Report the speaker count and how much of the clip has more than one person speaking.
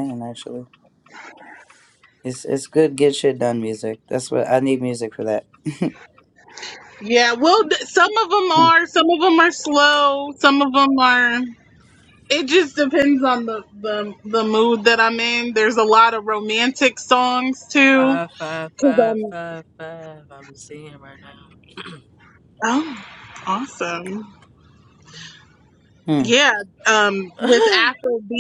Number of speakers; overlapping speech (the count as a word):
three, about 1%